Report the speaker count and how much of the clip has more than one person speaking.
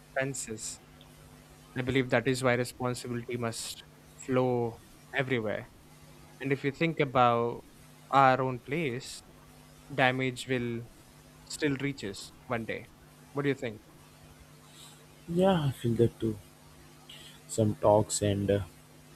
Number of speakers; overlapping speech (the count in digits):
2, no overlap